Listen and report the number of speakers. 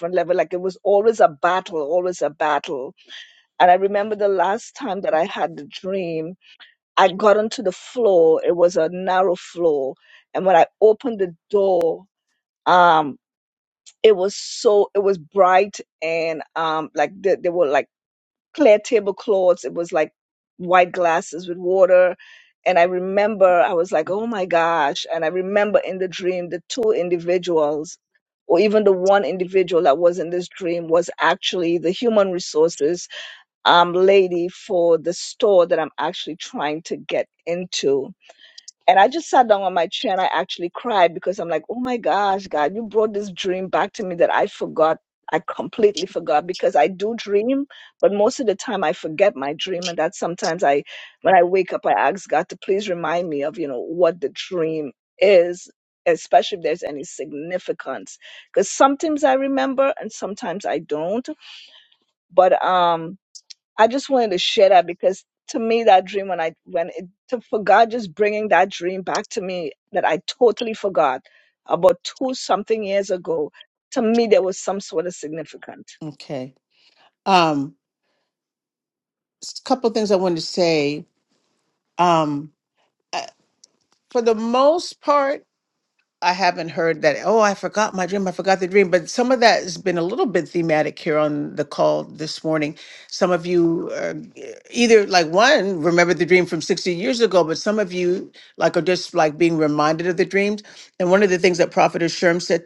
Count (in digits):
2